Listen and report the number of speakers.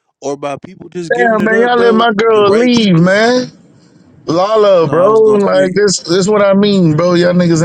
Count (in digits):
2